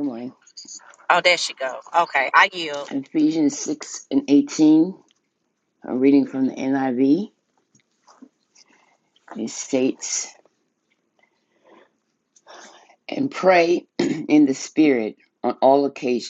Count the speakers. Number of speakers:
2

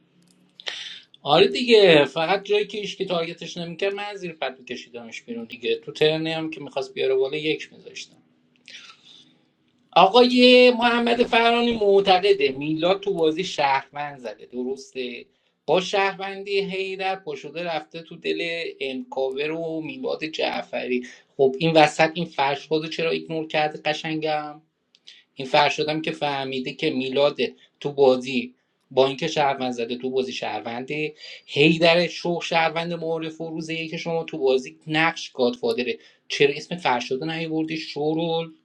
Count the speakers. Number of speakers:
1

